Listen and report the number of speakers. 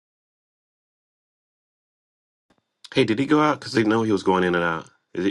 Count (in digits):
1